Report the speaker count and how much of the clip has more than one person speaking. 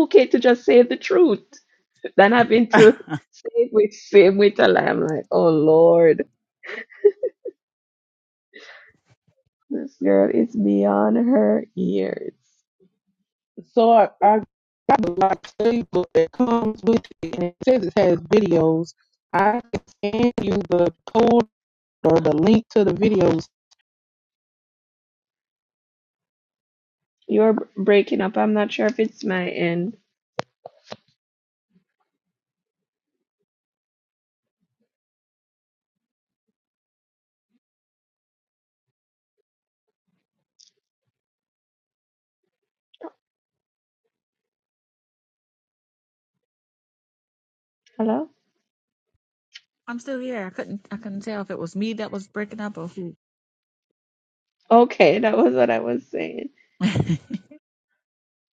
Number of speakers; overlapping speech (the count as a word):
three, no overlap